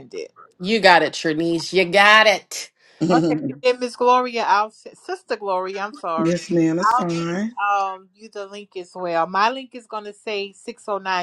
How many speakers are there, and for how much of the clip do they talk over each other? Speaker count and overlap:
3, about 7%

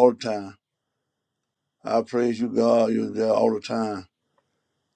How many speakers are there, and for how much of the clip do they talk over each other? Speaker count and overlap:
1, no overlap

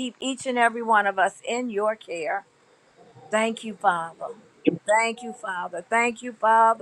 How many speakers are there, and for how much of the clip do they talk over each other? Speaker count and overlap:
1, no overlap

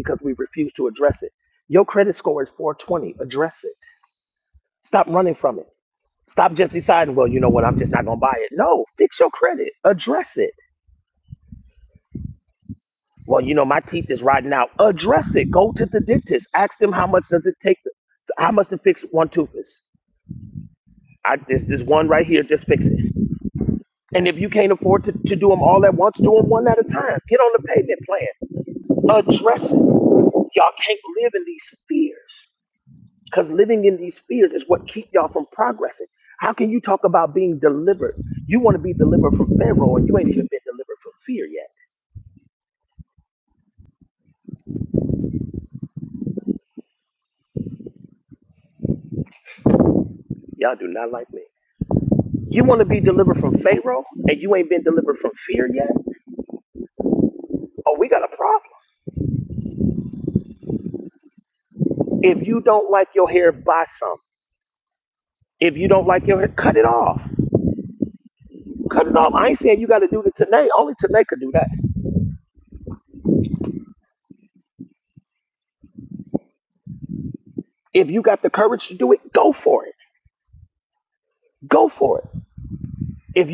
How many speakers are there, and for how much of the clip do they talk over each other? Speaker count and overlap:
1, no overlap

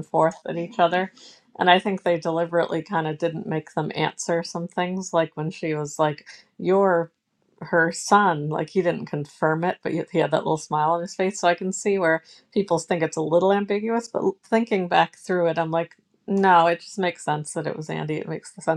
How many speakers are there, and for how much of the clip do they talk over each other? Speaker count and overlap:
1, no overlap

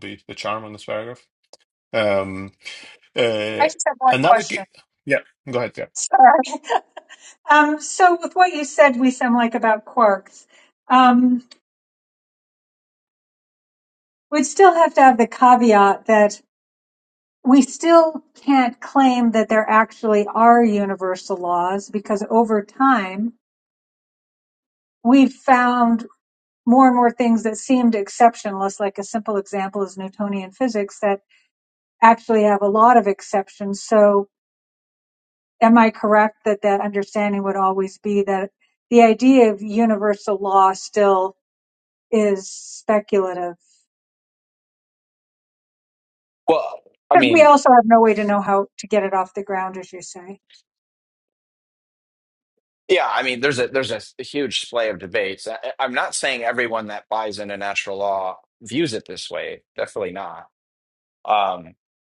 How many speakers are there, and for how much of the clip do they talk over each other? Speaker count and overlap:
3, about 2%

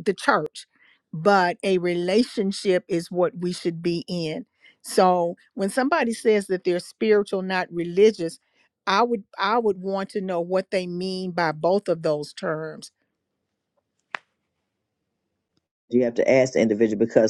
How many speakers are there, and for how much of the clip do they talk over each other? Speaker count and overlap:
2, no overlap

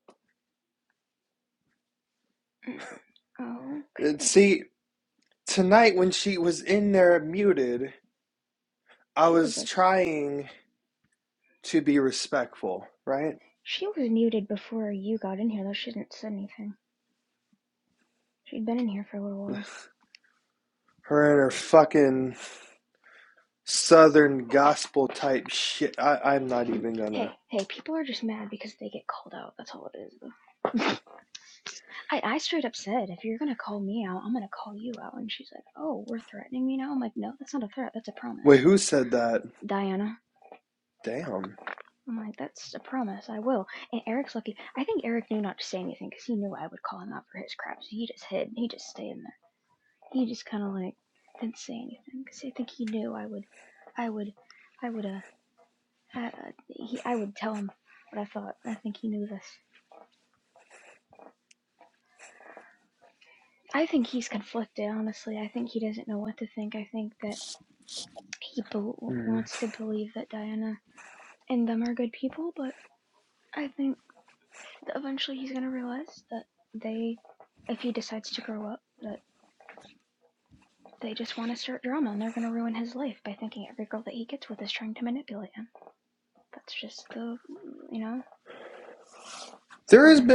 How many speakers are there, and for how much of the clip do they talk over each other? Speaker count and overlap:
2, about 3%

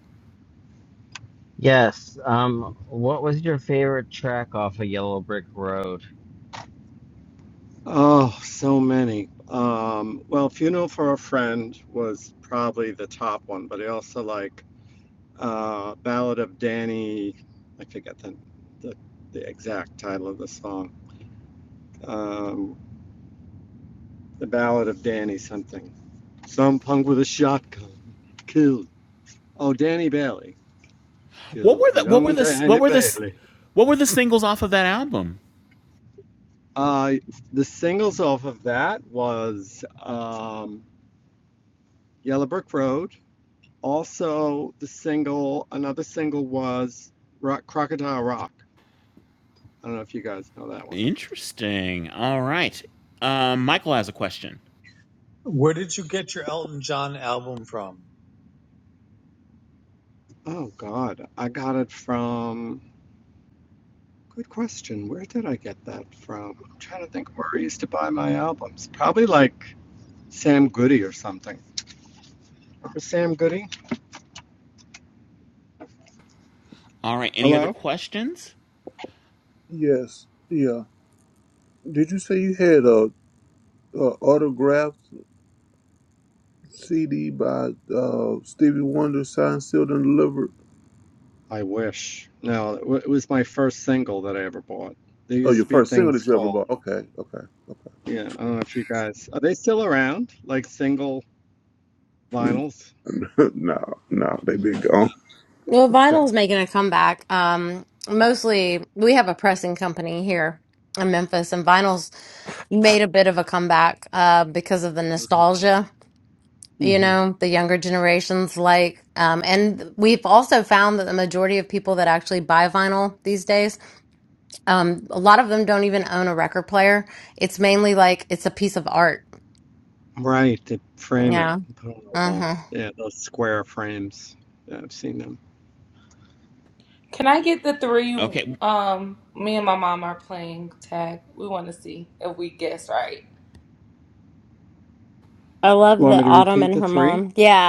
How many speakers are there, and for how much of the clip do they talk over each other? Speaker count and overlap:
7, about 4%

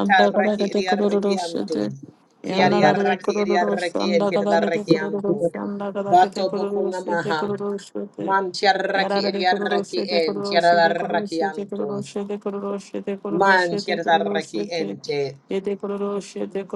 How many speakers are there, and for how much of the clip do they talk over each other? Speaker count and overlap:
2, about 66%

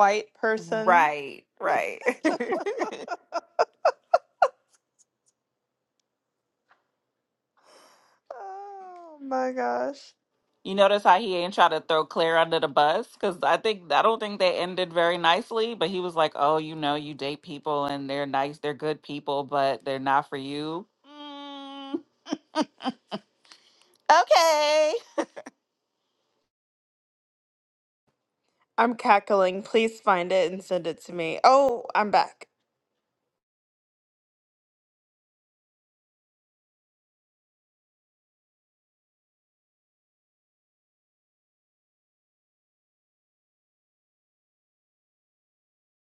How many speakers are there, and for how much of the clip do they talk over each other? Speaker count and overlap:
2, about 1%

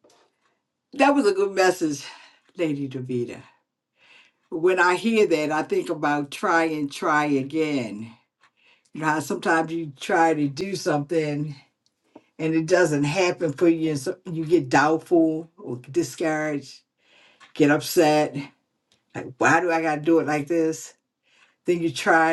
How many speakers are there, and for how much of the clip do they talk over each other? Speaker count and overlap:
1, no overlap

